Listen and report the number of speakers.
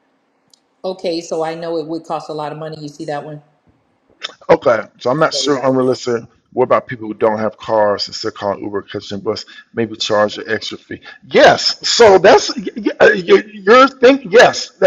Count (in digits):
2